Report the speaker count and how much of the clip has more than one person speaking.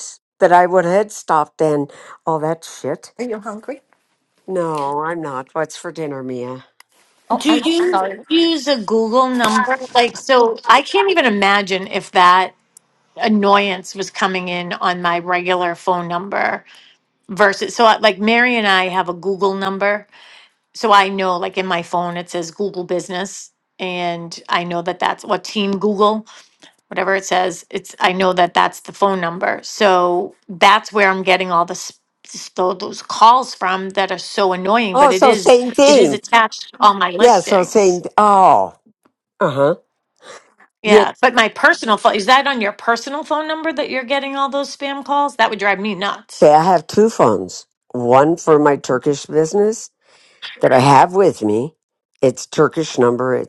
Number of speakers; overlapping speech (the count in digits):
3, about 5%